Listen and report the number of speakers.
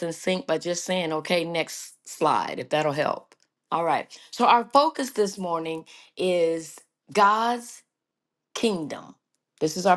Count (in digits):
1